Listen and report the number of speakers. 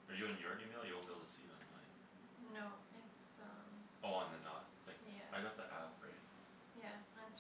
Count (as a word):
two